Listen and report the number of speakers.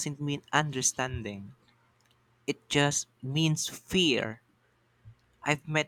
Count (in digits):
1